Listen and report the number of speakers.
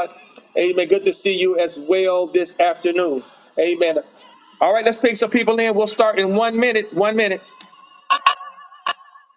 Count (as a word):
one